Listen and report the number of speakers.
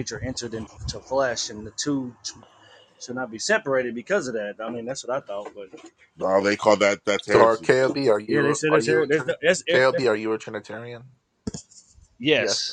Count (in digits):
3